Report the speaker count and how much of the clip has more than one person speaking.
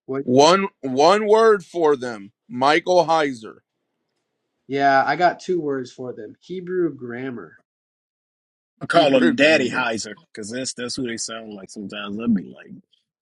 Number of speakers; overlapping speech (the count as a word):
three, about 7%